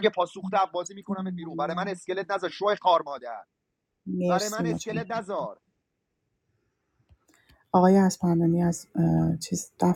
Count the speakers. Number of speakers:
2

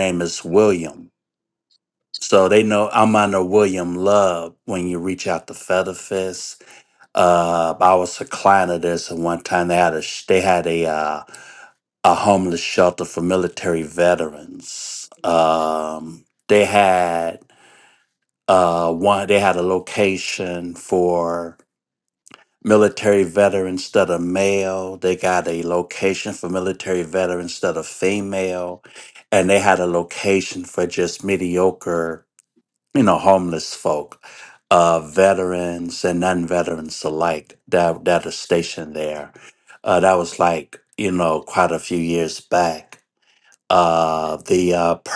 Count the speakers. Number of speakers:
1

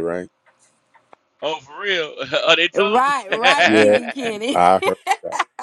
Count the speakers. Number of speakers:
3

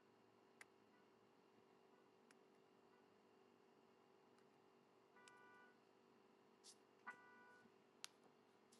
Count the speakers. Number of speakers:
0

